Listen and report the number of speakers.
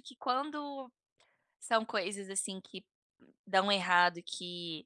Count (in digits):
1